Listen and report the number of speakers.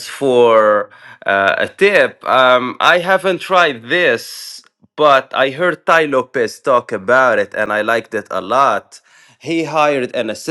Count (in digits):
1